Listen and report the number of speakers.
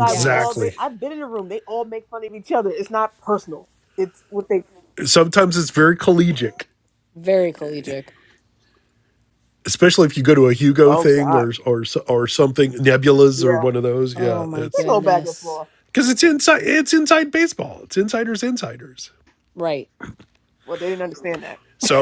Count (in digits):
3